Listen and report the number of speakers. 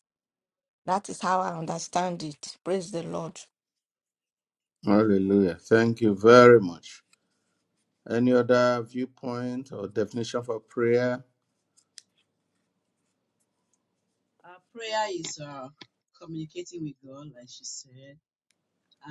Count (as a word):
three